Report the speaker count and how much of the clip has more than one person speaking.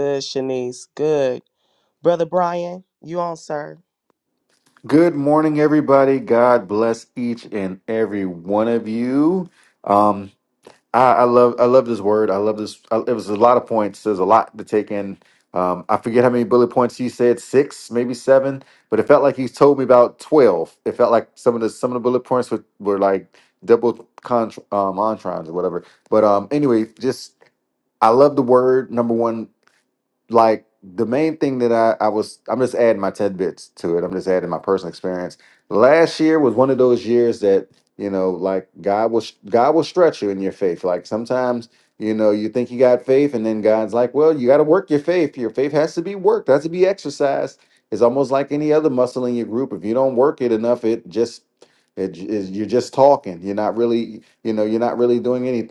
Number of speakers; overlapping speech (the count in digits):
2, no overlap